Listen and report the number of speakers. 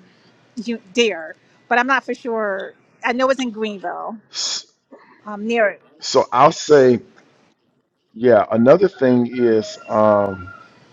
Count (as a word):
two